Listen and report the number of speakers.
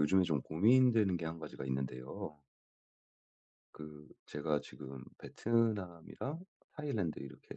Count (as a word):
one